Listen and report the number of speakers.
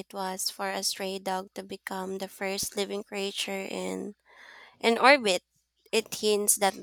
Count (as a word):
one